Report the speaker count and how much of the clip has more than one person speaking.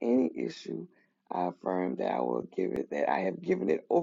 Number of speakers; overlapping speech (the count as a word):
one, no overlap